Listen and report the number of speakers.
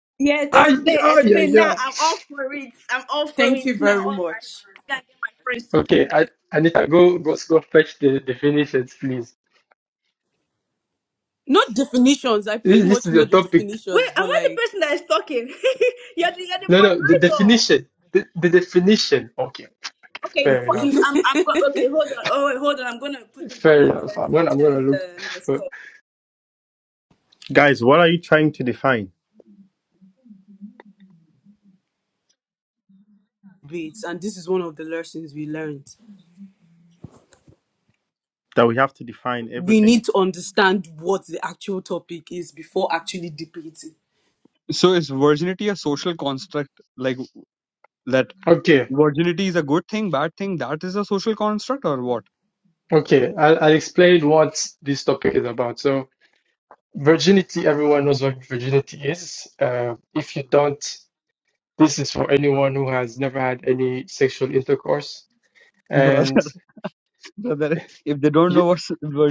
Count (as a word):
five